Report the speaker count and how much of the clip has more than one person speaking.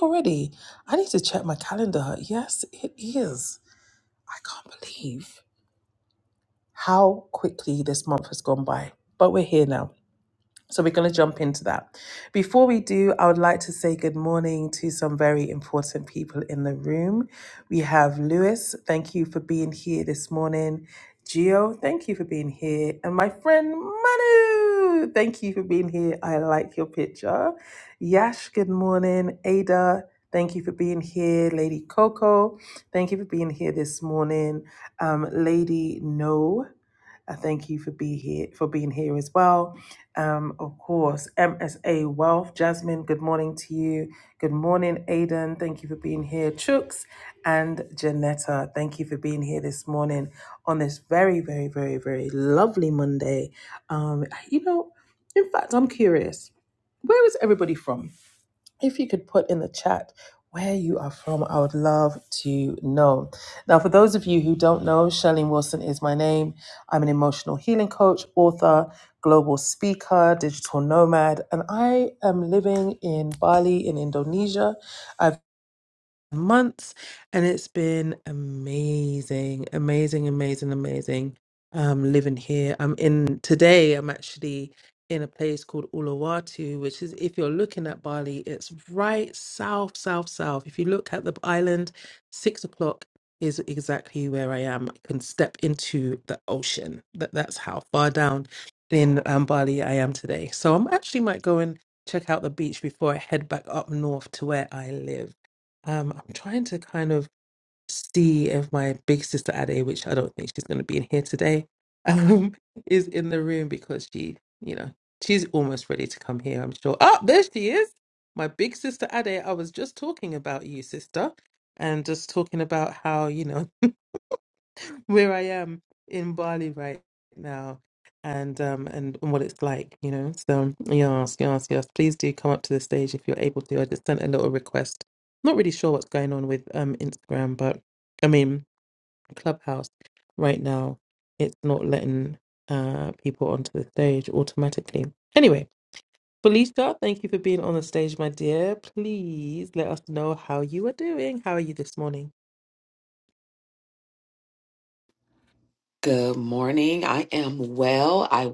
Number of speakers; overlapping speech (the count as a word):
two, no overlap